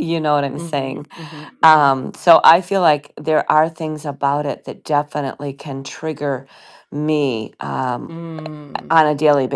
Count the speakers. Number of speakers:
two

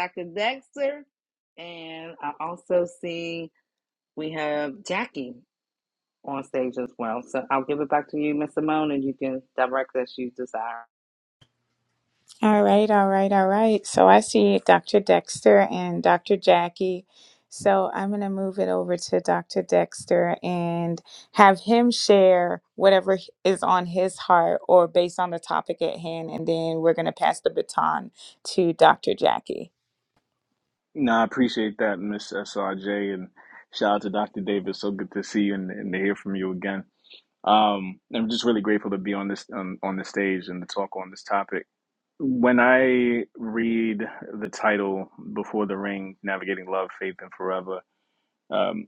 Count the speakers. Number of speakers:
three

